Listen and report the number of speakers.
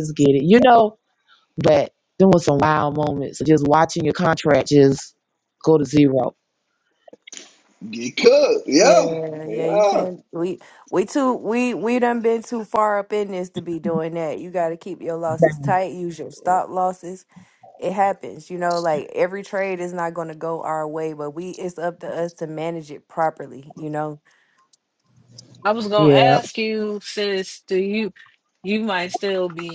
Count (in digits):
4